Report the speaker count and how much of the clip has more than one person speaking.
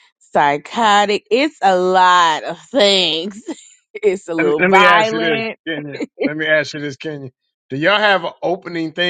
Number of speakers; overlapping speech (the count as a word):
two, about 13%